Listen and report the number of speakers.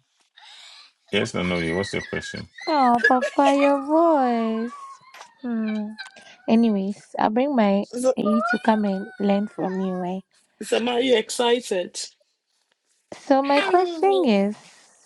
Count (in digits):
3